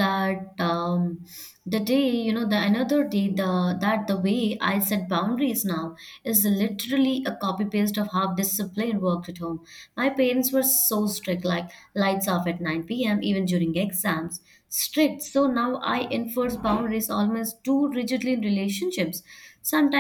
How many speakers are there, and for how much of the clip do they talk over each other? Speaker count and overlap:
one, no overlap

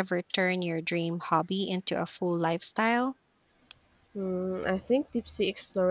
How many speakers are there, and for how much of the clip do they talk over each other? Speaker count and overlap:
two, no overlap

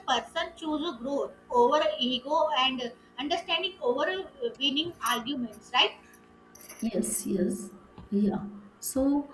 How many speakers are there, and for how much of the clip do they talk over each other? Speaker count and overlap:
two, no overlap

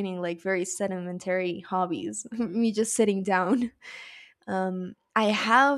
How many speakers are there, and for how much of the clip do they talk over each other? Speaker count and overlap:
one, no overlap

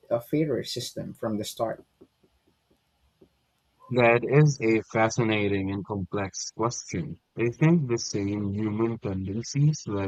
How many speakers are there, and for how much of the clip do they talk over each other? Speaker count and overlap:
two, no overlap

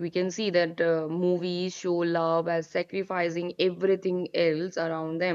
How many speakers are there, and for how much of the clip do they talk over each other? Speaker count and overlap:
one, no overlap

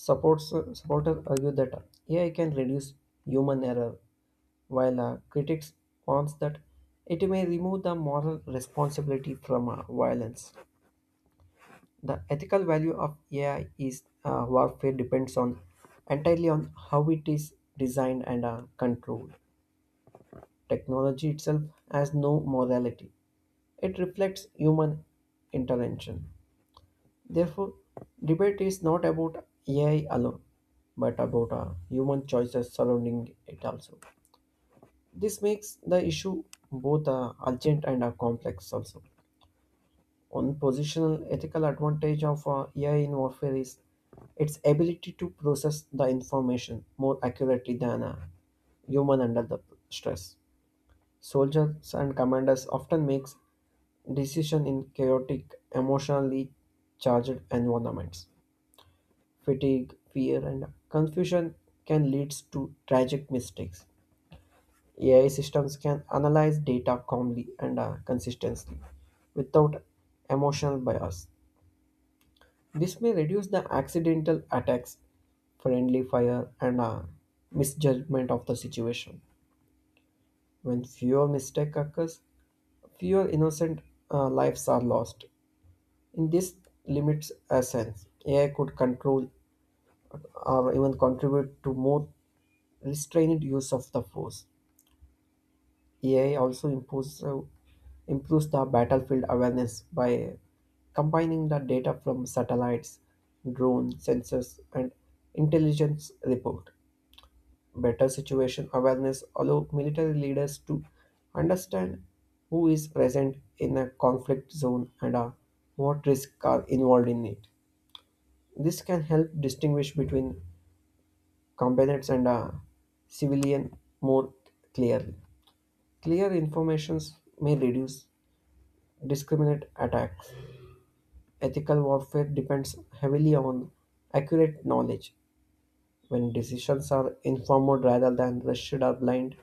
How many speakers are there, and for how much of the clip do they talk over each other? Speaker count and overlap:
one, no overlap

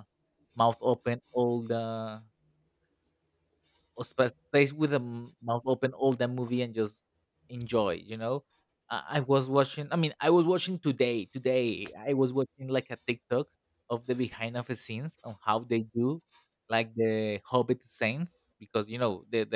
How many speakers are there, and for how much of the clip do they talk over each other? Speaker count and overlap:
one, no overlap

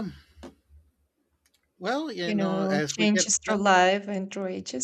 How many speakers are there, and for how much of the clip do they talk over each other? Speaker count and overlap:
two, about 27%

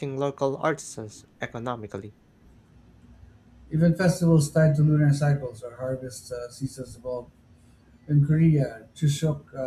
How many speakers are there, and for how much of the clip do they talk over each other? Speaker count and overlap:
two, no overlap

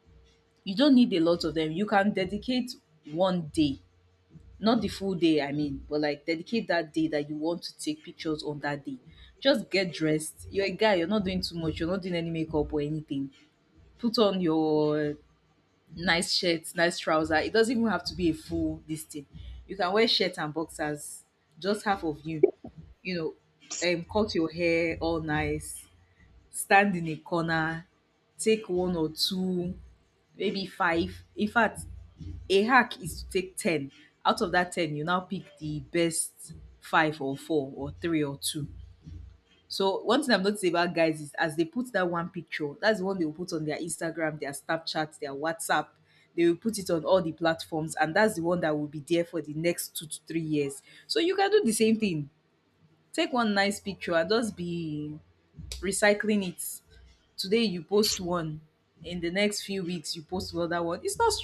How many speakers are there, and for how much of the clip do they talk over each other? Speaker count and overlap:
one, no overlap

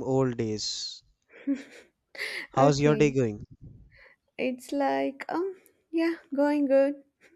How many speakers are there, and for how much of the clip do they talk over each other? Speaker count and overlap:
two, about 8%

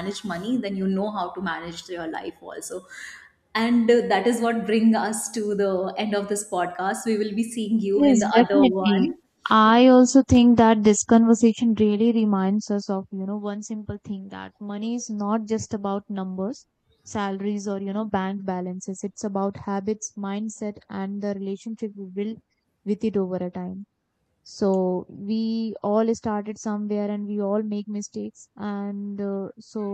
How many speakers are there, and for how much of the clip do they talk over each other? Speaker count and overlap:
two, about 4%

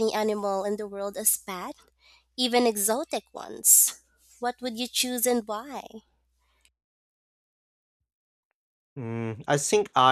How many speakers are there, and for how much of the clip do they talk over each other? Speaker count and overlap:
two, no overlap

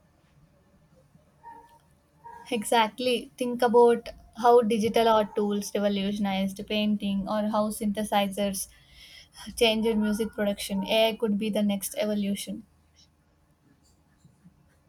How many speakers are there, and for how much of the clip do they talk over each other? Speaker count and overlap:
one, no overlap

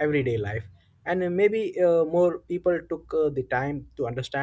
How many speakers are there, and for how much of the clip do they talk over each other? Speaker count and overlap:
one, no overlap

